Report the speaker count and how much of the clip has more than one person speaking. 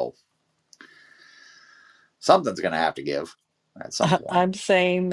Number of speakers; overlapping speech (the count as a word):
two, about 8%